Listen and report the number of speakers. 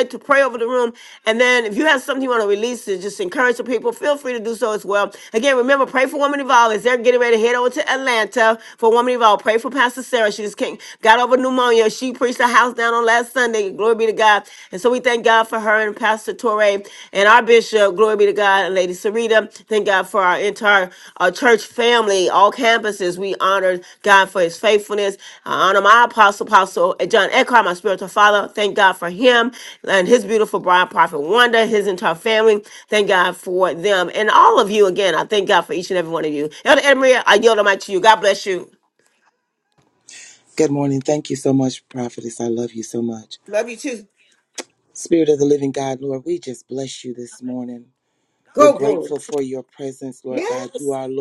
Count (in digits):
2